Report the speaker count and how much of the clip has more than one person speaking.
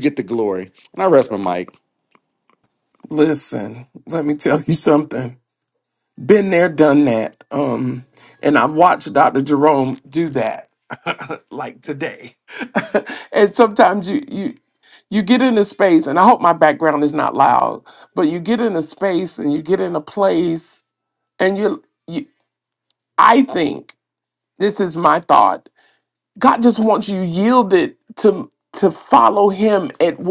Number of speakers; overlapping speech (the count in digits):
2, no overlap